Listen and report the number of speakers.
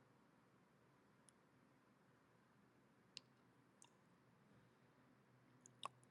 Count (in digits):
0